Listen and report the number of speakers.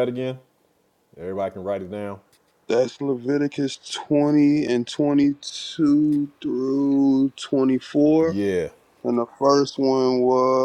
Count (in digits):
2